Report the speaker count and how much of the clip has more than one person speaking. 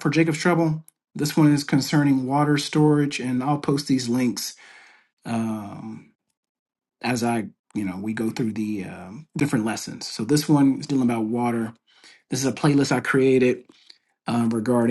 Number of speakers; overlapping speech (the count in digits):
1, no overlap